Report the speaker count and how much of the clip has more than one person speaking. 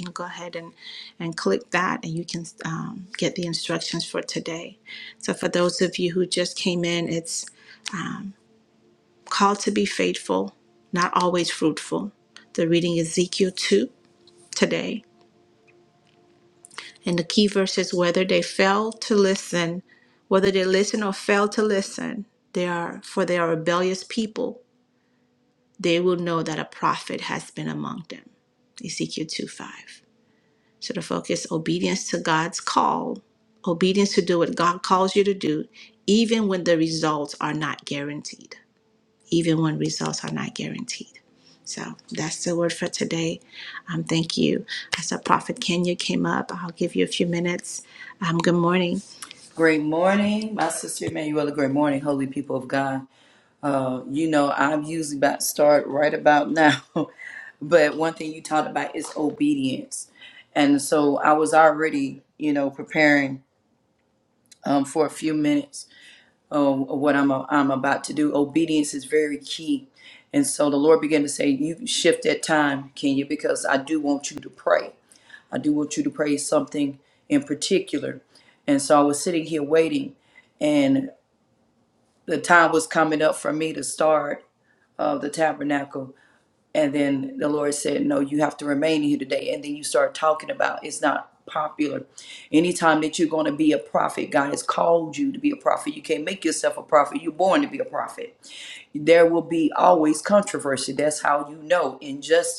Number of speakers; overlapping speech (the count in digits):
2, no overlap